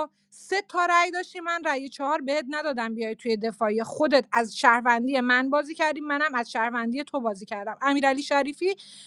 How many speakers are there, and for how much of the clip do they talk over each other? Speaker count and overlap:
1, no overlap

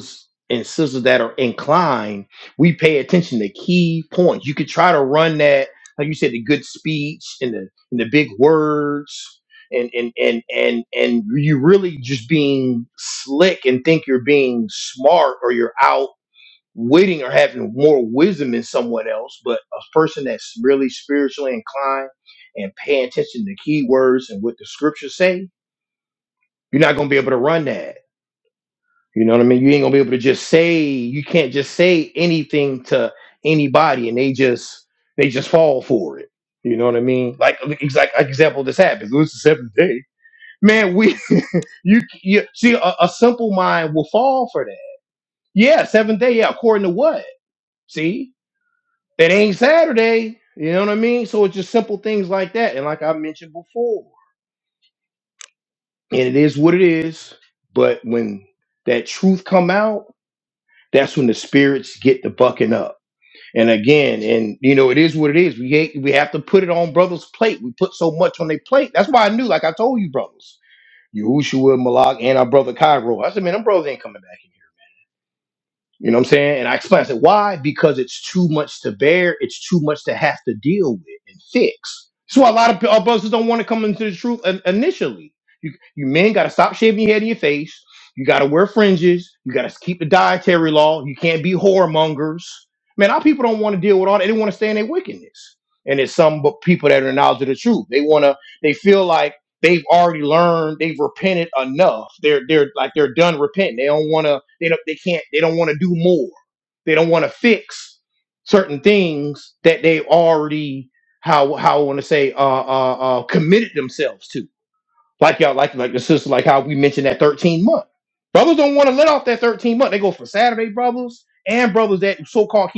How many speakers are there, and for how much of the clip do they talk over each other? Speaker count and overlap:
1, no overlap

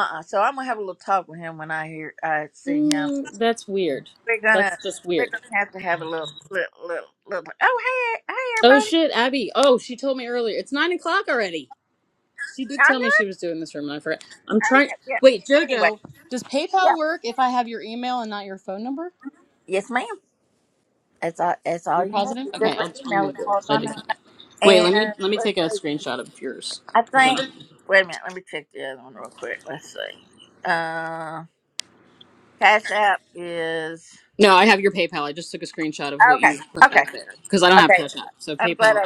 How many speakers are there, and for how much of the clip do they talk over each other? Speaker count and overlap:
2, about 20%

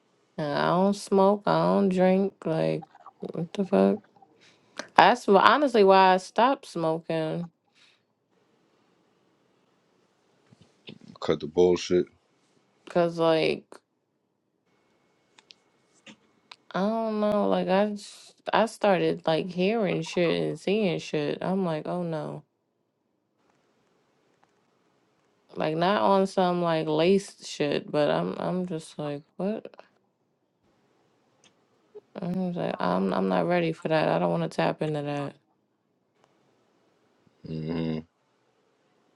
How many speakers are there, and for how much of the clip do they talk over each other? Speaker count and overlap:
2, no overlap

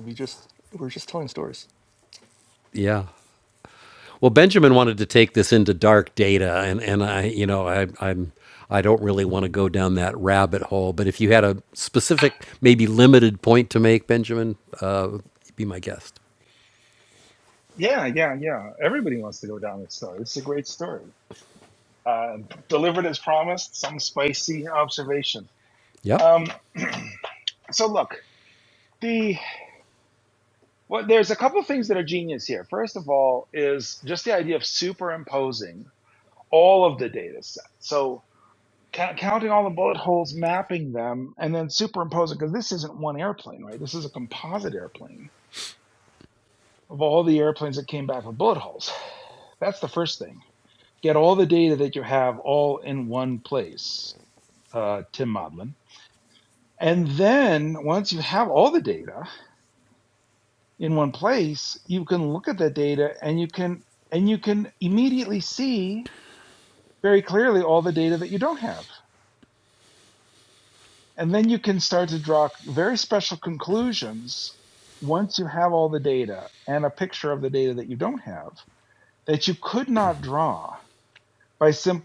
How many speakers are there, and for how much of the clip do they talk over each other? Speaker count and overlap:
3, under 1%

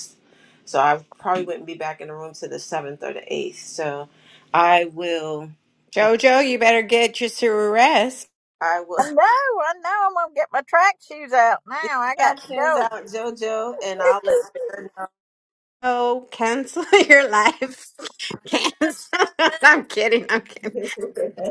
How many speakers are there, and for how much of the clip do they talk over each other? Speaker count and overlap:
3, about 6%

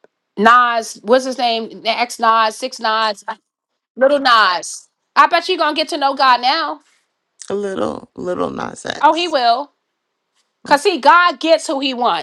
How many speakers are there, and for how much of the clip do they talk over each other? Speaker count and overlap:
2, about 1%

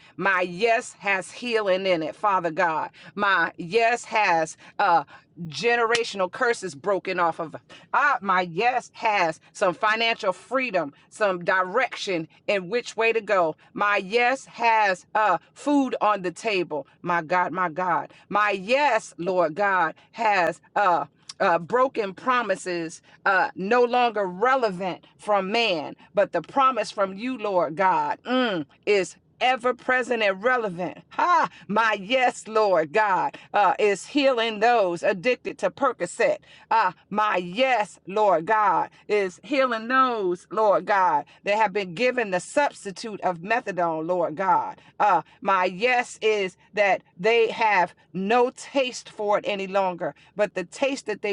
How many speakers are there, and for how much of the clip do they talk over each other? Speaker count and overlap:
1, no overlap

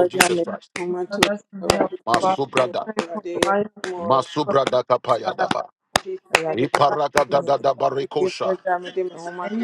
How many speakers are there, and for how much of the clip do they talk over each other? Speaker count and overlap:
3, about 56%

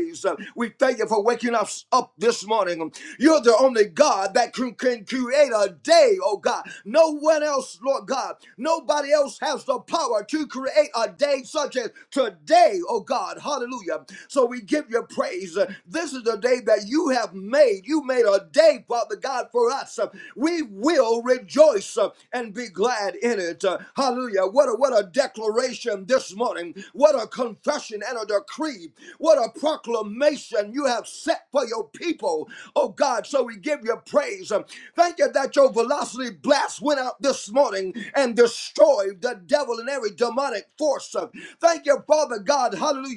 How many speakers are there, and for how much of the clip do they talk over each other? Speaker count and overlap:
1, no overlap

